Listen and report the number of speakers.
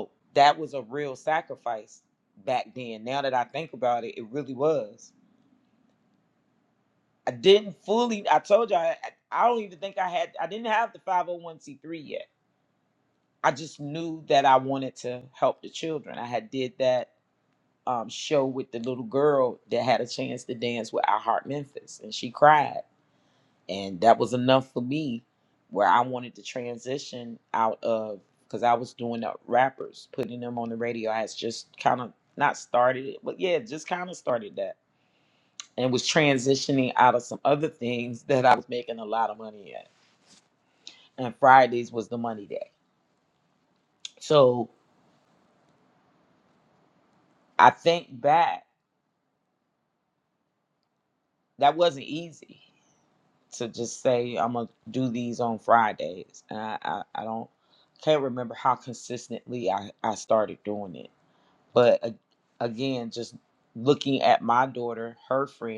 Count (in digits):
1